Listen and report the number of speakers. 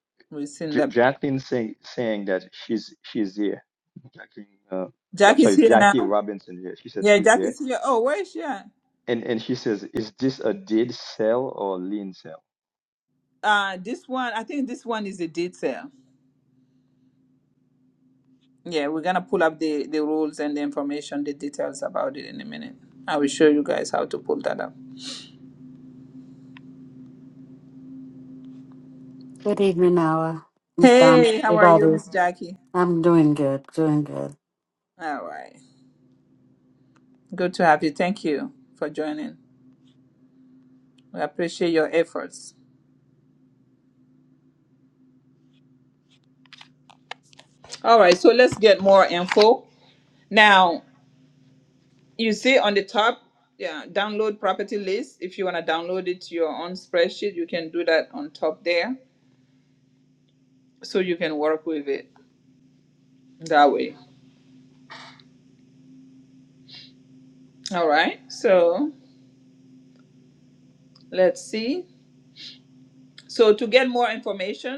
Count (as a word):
three